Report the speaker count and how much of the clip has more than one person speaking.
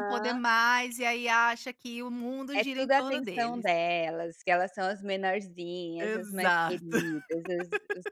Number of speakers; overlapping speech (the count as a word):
two, about 31%